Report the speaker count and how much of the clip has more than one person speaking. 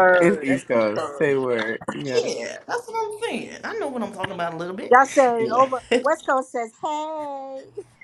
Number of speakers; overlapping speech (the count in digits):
3, about 21%